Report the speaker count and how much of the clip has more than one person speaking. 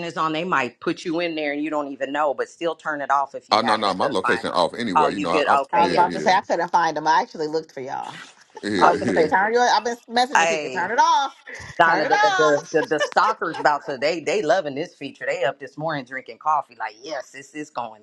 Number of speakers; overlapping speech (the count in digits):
3, about 25%